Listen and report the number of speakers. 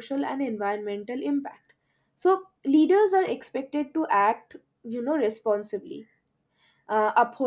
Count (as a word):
one